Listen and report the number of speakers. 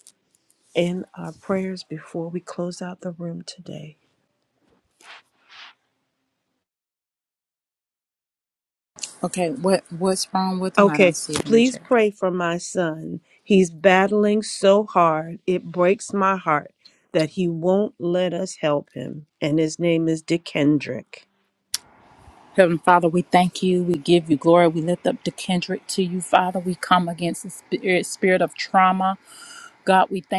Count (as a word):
two